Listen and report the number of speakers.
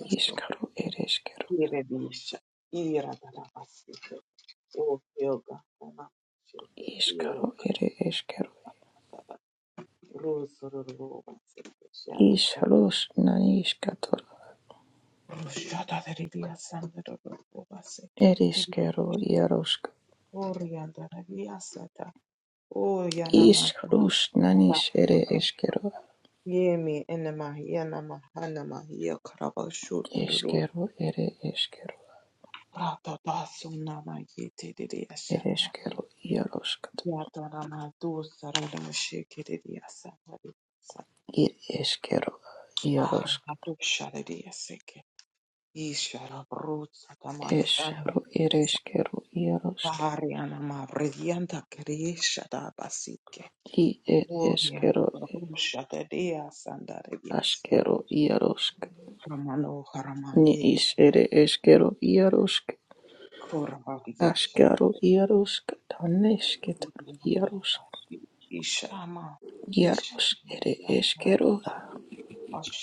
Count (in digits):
2